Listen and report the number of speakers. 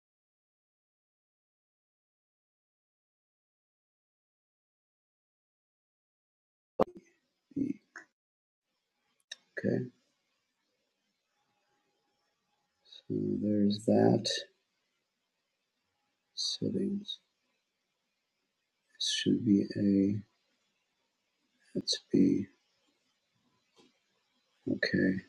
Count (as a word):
one